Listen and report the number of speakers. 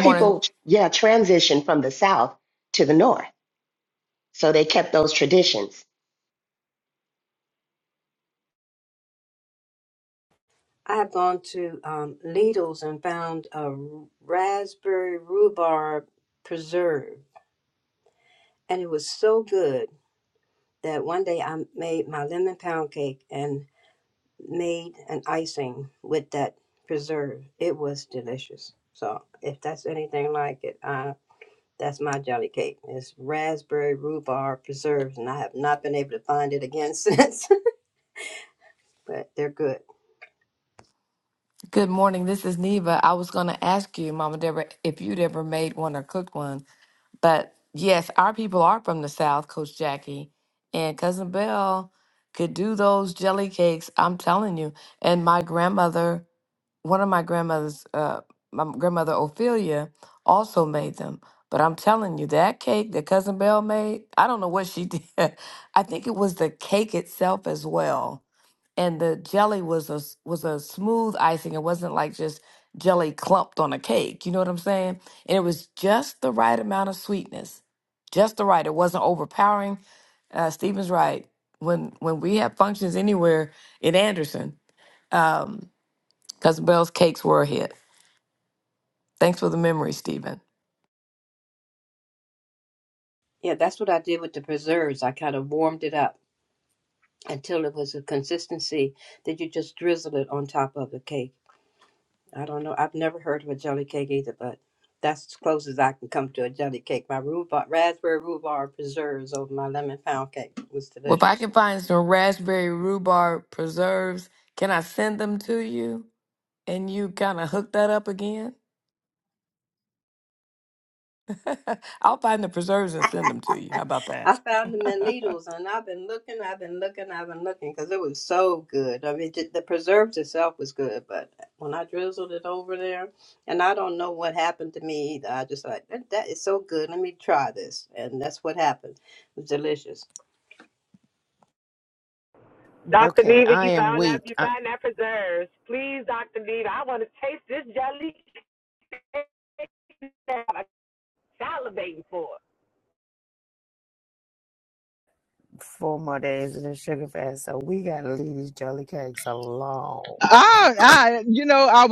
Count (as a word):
six